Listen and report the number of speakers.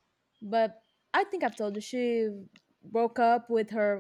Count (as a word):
one